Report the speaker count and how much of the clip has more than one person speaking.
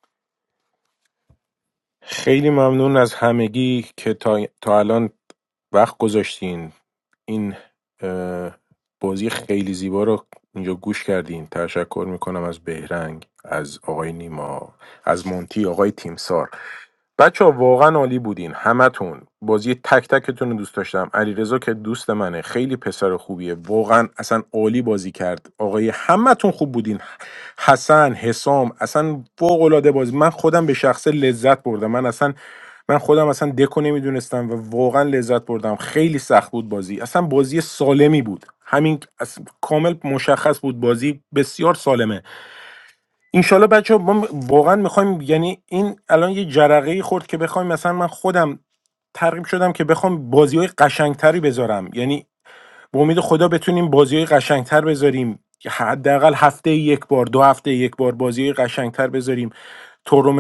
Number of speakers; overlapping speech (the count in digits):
1, no overlap